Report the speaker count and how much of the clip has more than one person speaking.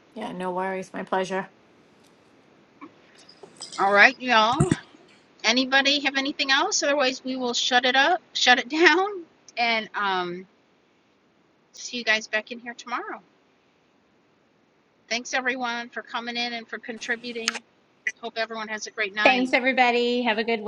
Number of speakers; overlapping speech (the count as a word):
three, about 1%